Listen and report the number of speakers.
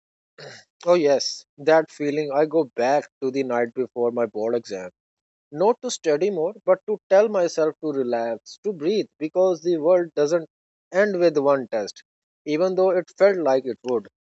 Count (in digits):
1